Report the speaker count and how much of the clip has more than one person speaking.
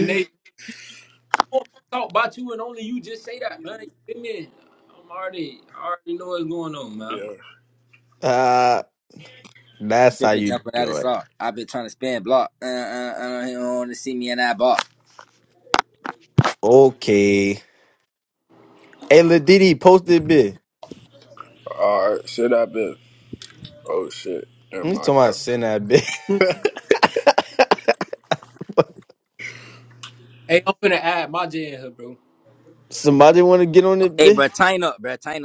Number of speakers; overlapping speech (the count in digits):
4, about 5%